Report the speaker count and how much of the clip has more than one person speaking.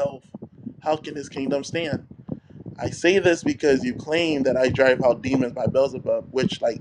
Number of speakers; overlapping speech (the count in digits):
1, no overlap